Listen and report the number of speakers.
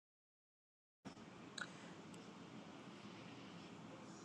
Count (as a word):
zero